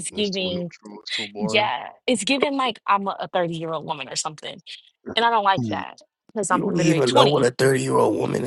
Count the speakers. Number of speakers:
3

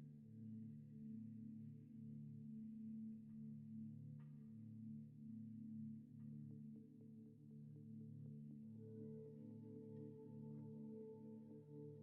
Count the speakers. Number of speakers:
0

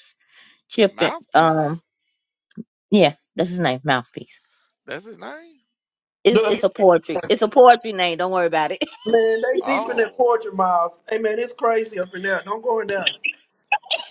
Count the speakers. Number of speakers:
3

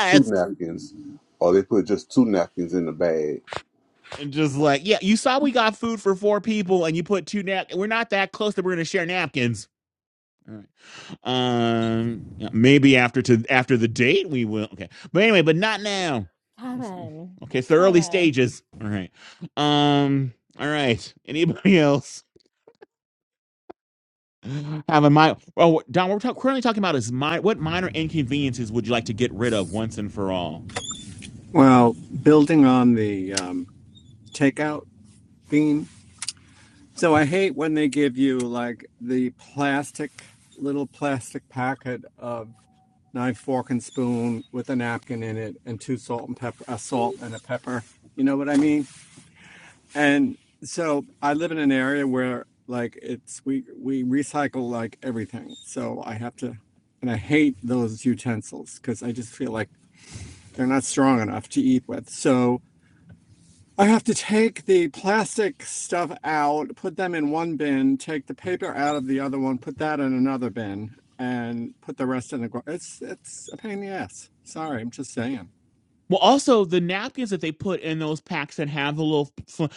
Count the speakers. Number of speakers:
4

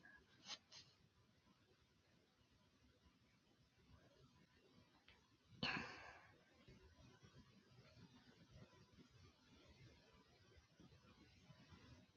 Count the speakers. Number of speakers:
0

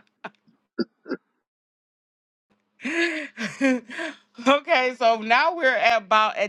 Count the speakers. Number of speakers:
1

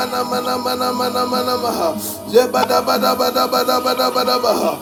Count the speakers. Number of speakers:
1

